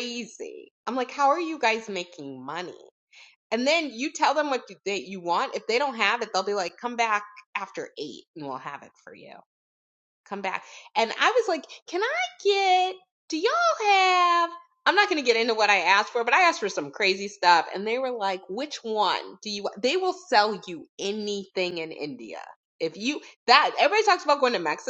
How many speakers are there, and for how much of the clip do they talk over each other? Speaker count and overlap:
one, no overlap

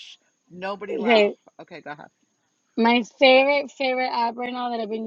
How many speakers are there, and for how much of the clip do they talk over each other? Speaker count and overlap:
two, about 7%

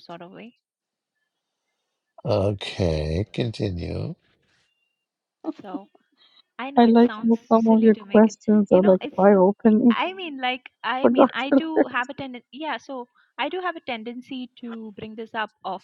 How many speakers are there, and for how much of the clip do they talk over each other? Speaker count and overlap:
three, about 19%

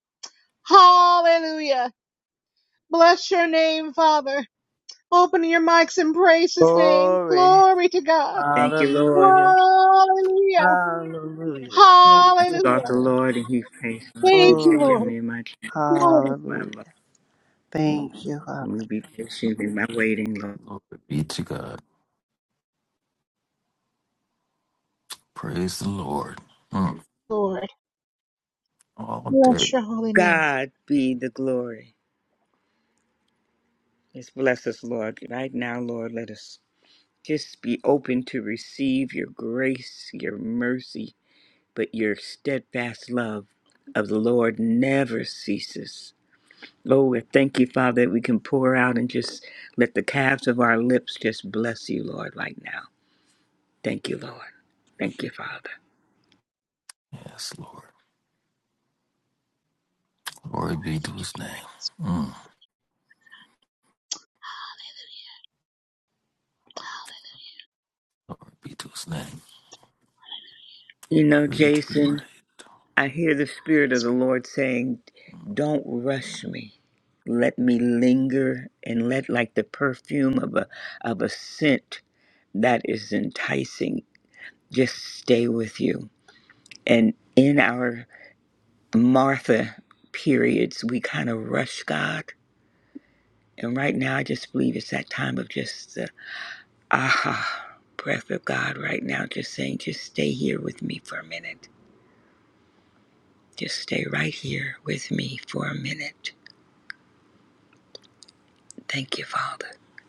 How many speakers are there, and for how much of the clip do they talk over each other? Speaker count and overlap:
four, about 5%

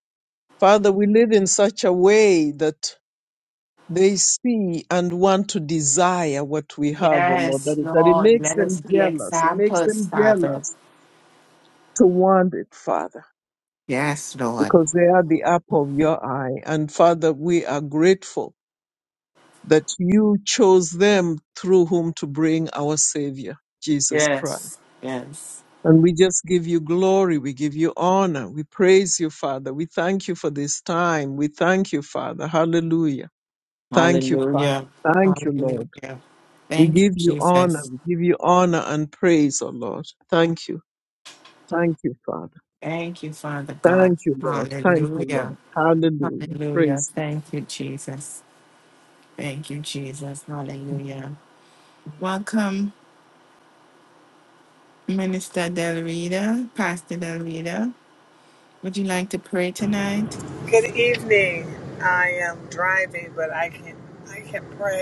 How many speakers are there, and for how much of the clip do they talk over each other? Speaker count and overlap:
three, about 14%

